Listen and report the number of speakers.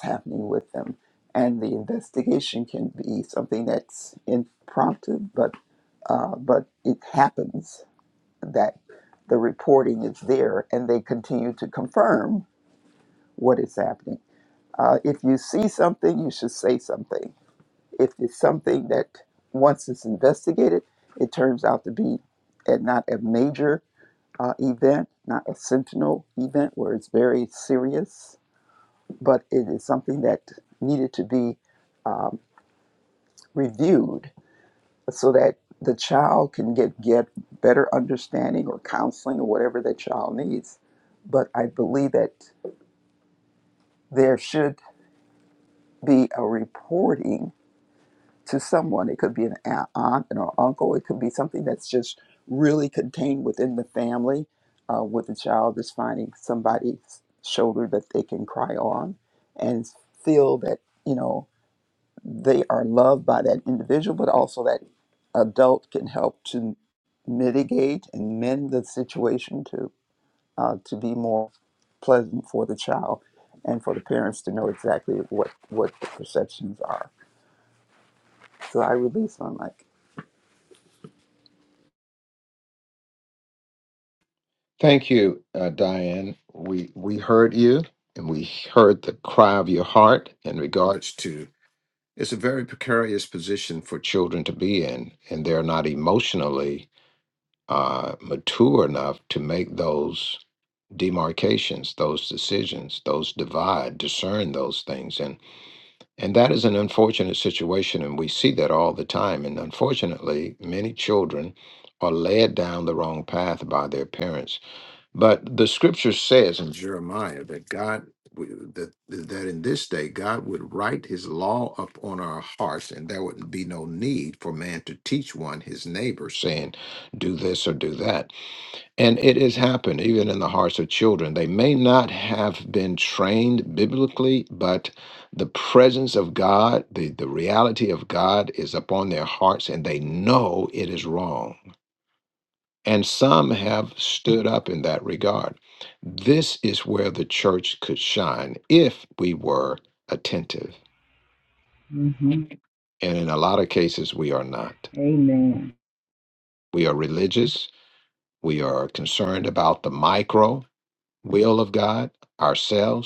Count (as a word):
three